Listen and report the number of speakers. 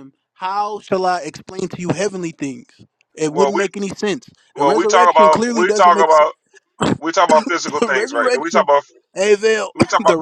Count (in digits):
2